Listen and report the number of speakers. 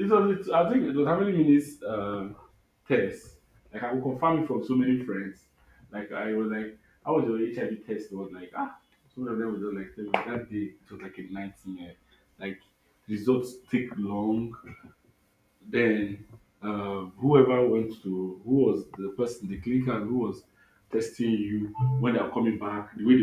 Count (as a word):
one